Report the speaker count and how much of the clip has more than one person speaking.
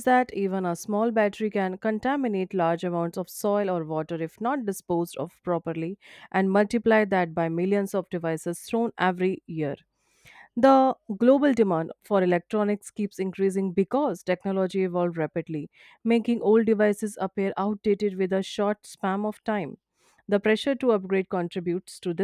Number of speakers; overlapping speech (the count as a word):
one, no overlap